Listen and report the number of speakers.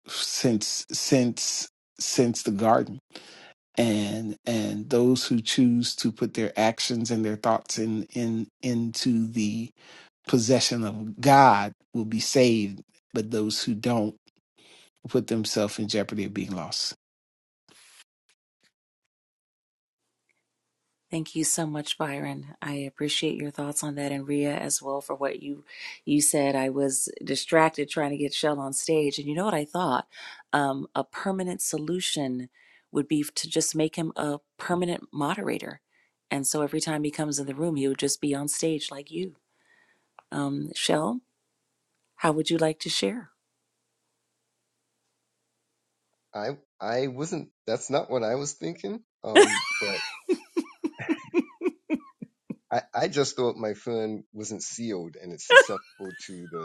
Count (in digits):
3